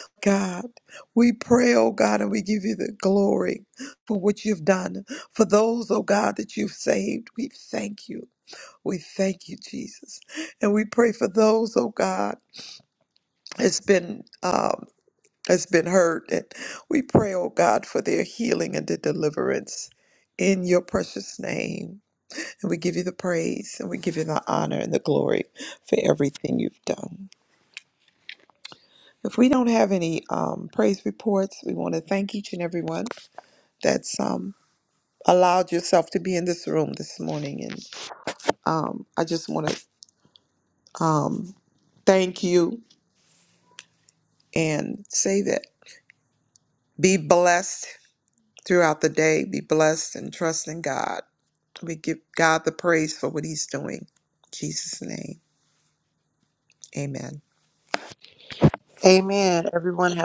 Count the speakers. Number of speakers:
2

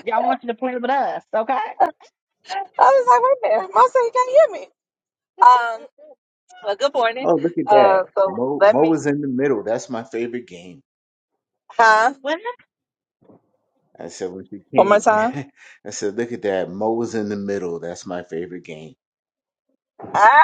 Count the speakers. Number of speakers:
3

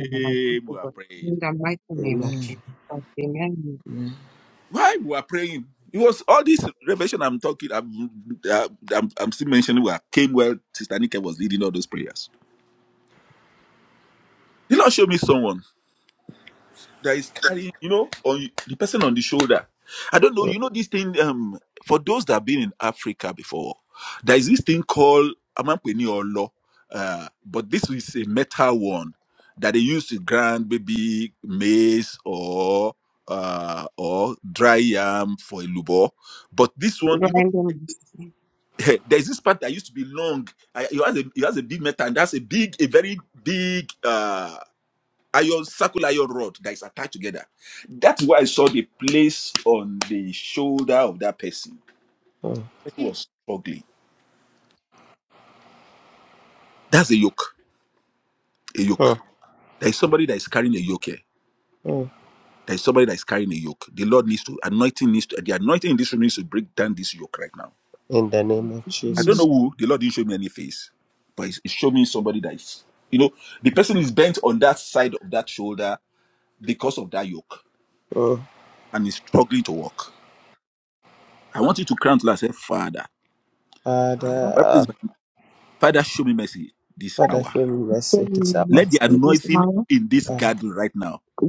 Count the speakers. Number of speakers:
3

